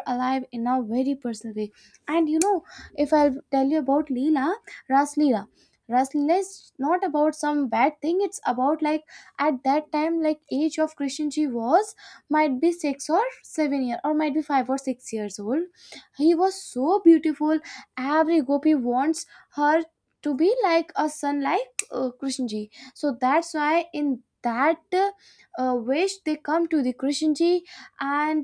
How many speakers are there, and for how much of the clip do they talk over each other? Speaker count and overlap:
one, no overlap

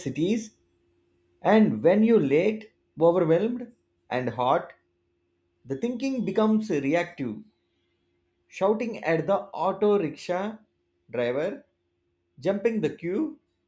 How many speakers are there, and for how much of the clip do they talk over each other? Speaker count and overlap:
one, no overlap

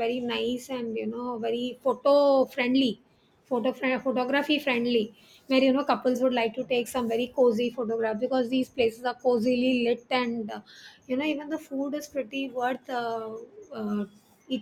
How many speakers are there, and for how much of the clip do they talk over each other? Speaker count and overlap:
one, no overlap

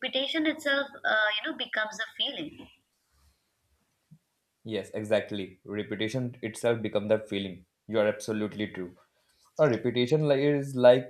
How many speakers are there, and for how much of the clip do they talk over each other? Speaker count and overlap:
two, no overlap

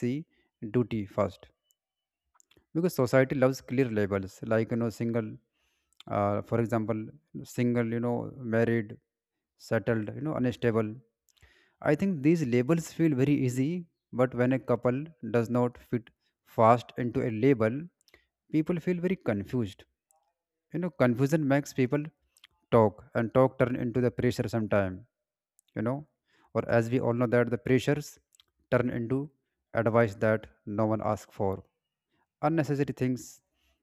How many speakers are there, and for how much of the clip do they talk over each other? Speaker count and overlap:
one, no overlap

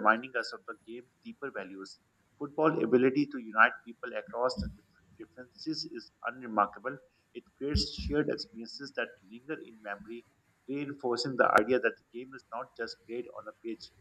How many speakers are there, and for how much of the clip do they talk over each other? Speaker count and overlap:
one, no overlap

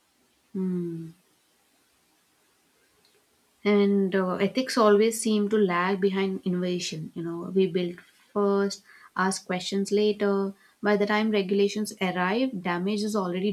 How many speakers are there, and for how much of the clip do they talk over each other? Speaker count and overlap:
one, no overlap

